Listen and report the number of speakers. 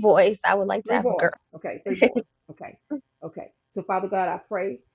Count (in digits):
2